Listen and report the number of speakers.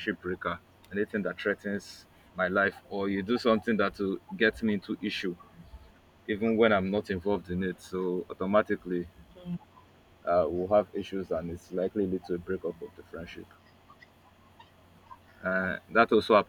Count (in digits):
1